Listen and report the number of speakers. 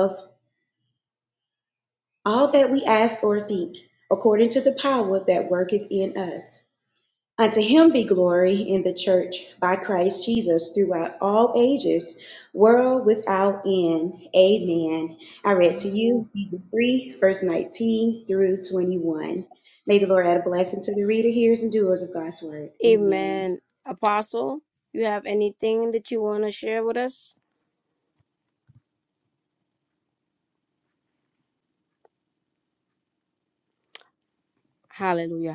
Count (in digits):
2